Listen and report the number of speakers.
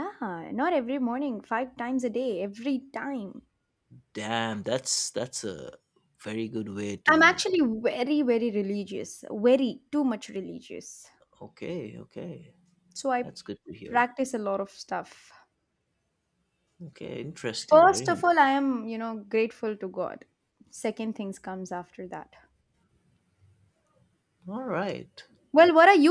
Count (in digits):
2